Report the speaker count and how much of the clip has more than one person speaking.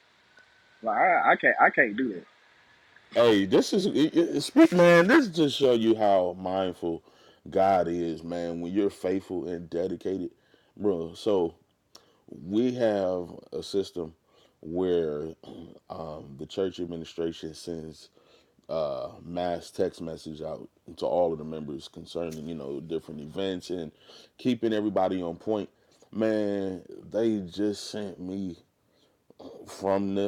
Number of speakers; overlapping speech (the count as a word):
two, no overlap